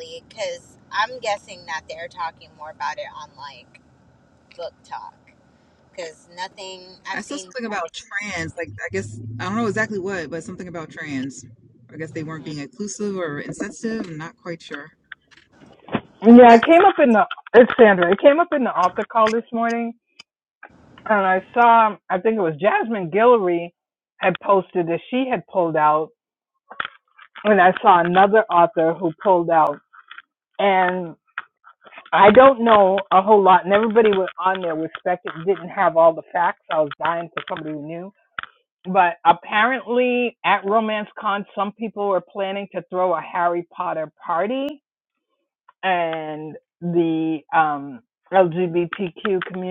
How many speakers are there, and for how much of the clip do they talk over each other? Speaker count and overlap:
3, about 1%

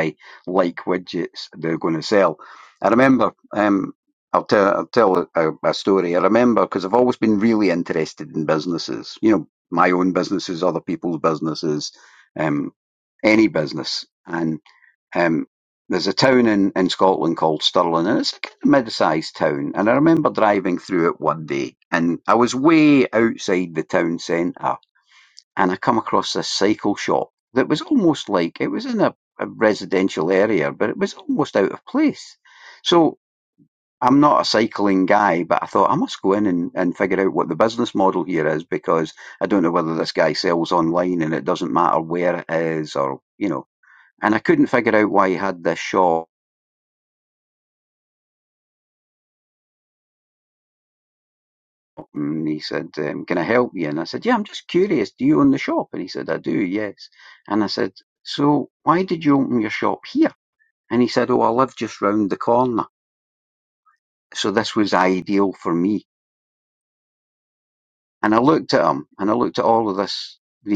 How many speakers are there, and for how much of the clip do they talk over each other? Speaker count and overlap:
1, no overlap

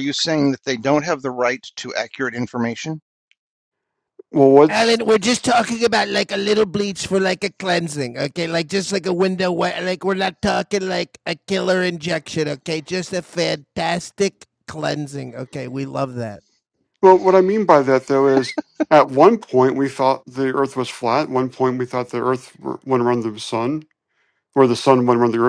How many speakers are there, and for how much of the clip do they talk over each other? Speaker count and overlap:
3, about 1%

